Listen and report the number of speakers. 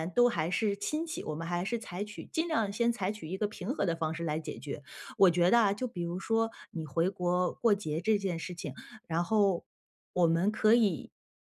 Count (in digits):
1